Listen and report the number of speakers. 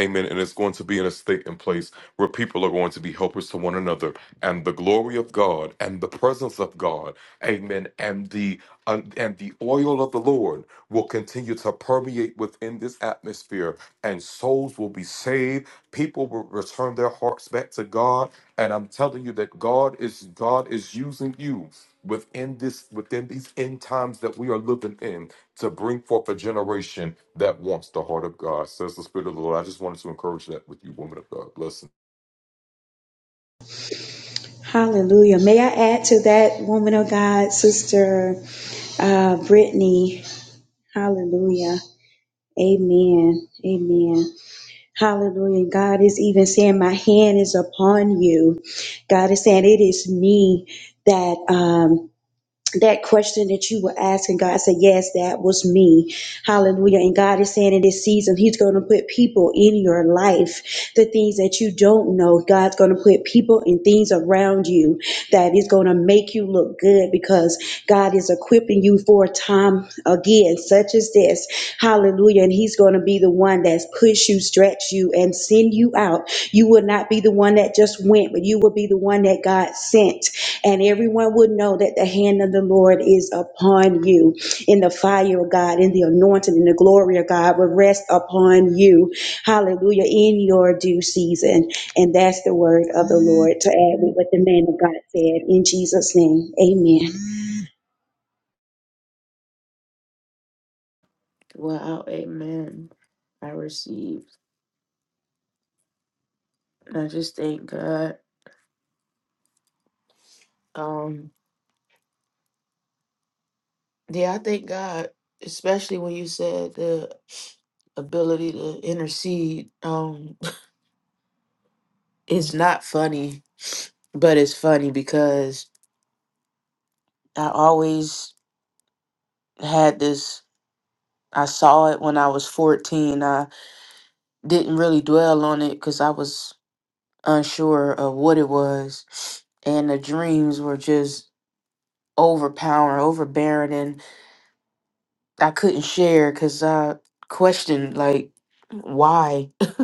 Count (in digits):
3